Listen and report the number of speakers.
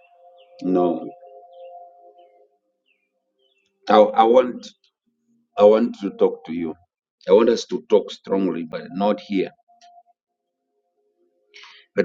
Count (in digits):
1